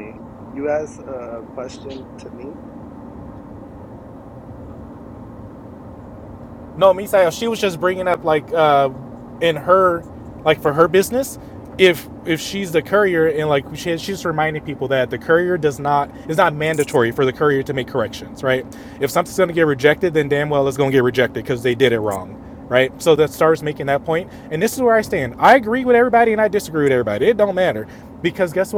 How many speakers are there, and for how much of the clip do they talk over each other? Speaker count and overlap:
2, no overlap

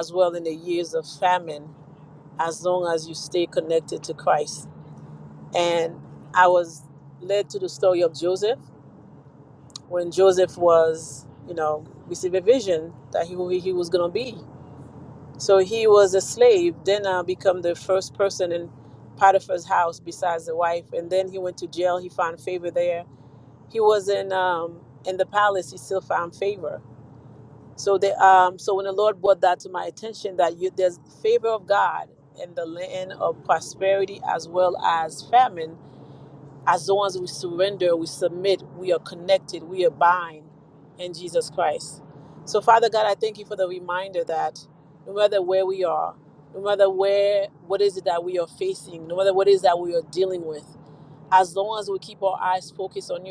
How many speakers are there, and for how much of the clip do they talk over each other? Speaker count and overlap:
1, no overlap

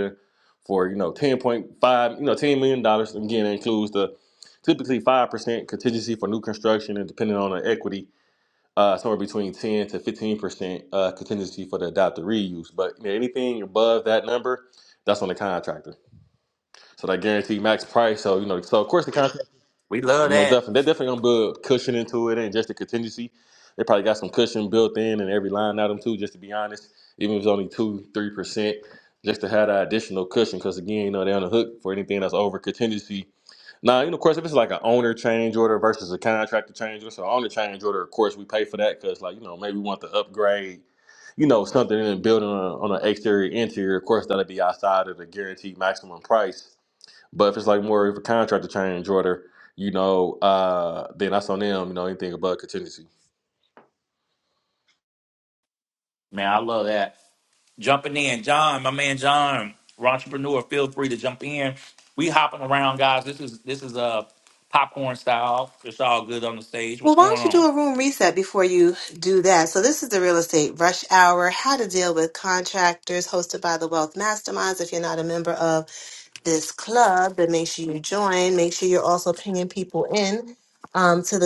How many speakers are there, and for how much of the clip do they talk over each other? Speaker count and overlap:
3, about 1%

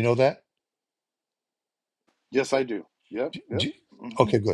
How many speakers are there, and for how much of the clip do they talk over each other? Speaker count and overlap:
2, about 11%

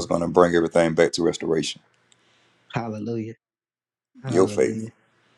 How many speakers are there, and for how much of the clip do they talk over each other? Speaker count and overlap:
2, about 10%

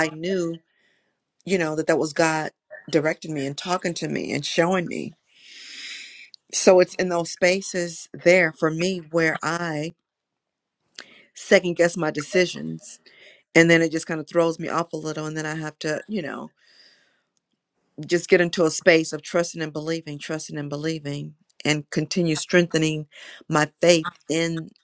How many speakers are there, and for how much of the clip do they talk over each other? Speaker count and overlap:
1, no overlap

